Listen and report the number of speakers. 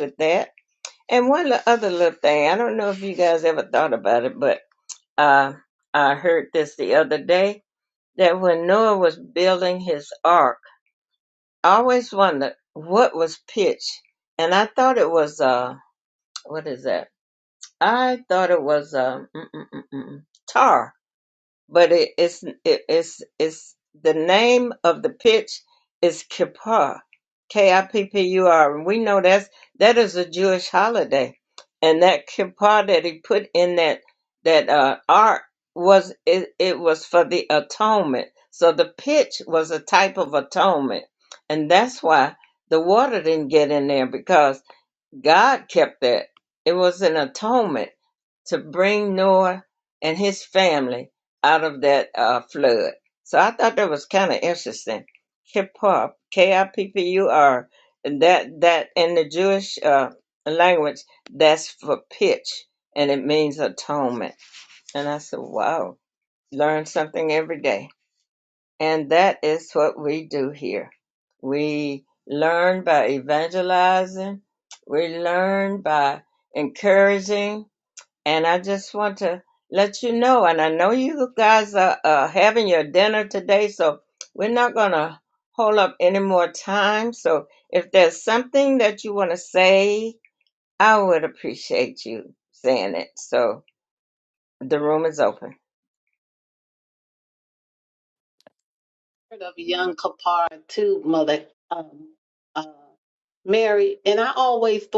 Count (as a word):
two